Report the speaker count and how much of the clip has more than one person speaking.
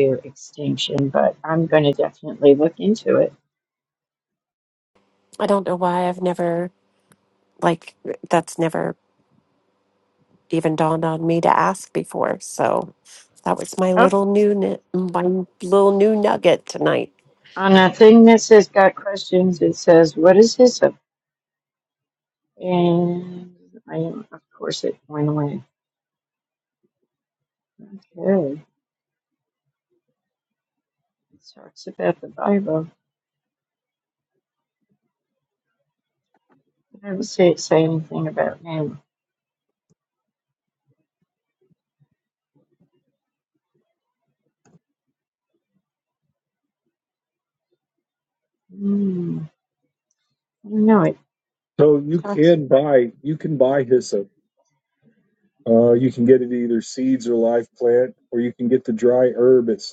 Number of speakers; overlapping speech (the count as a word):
three, about 1%